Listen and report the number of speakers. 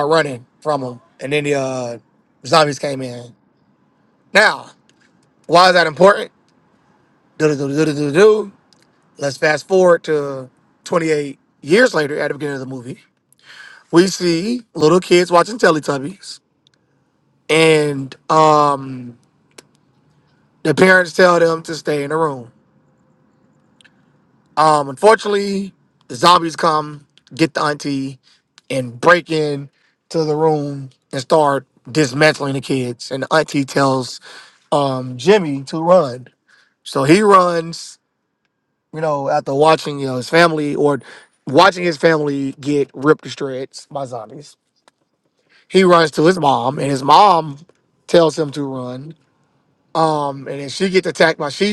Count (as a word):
one